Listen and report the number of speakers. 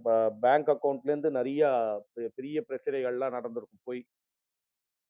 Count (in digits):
1